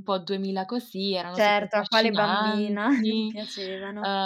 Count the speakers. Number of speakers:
2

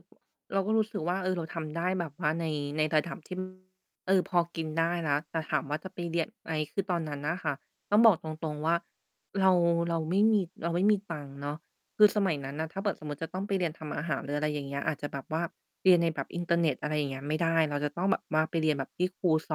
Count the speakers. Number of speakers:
1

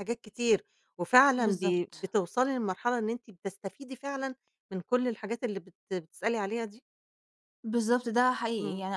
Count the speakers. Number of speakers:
2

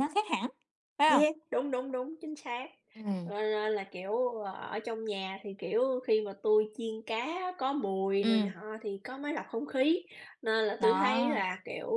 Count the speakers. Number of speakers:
2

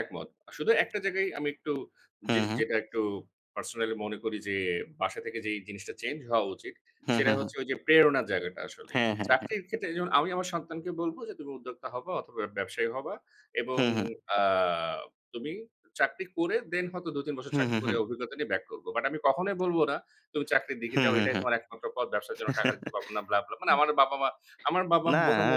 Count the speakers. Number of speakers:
2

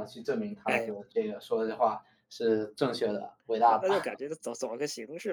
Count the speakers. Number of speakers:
2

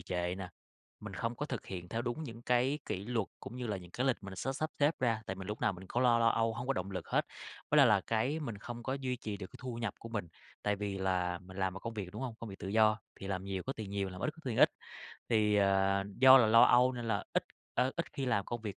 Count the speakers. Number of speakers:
1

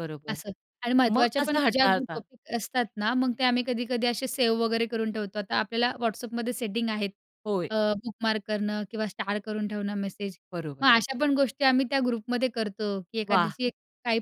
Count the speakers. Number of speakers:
2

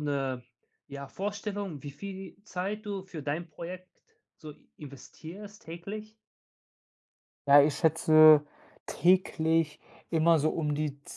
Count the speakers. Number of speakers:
2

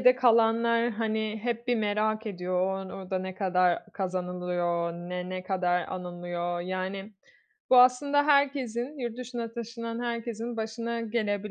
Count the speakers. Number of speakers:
1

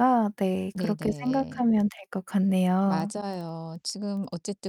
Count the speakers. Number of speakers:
2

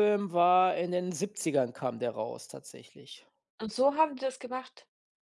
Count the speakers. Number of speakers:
2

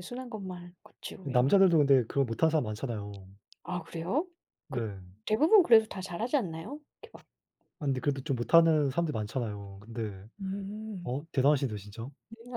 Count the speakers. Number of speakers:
2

